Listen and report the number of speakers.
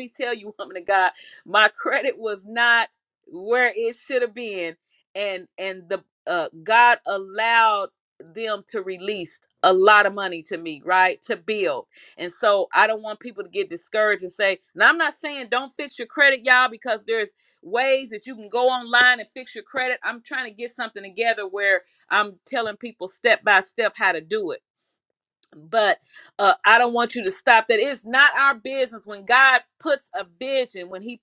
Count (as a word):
one